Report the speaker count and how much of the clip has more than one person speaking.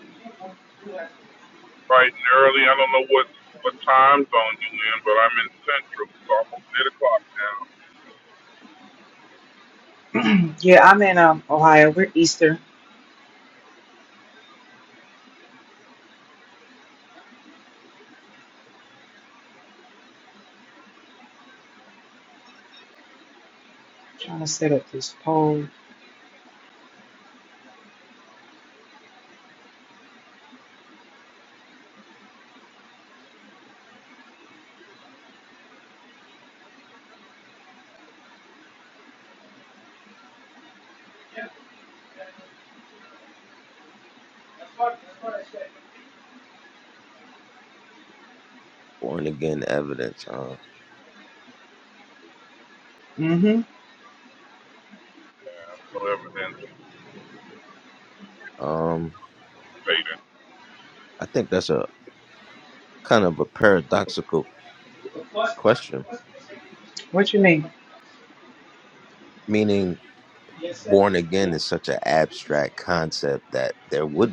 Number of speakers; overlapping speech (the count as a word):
three, no overlap